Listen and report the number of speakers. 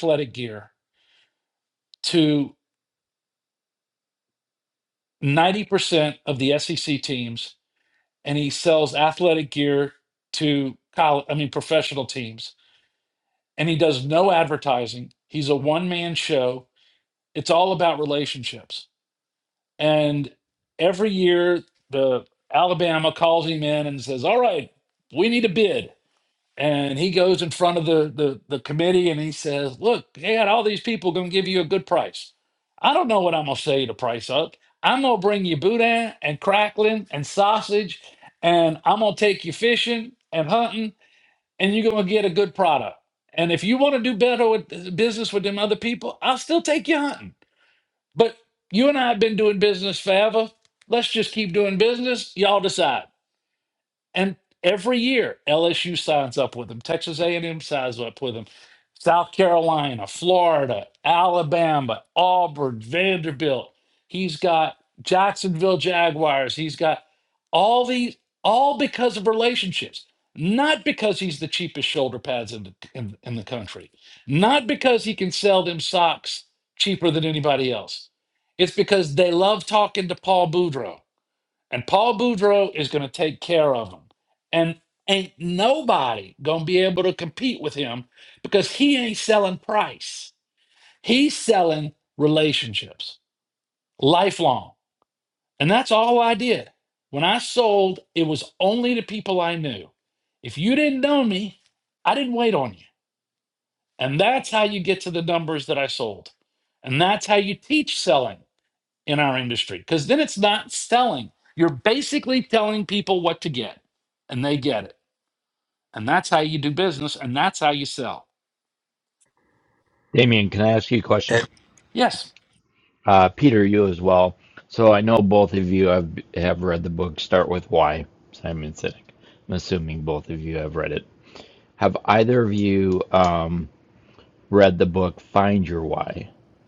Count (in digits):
2